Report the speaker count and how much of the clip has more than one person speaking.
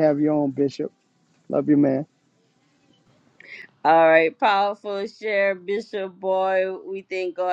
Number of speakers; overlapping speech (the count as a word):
two, no overlap